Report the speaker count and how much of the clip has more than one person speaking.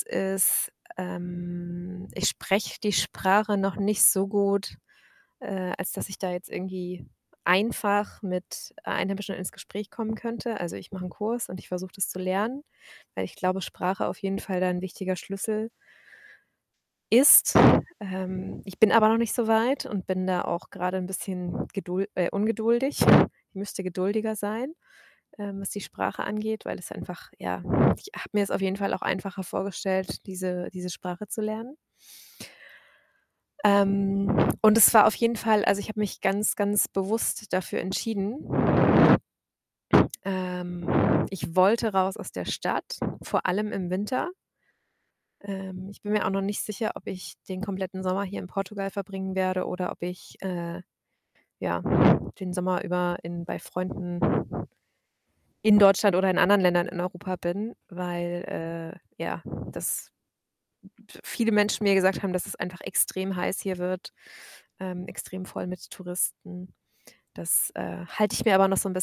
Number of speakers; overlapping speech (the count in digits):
1, no overlap